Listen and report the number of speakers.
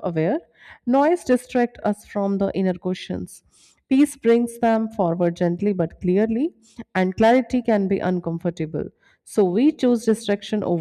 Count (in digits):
1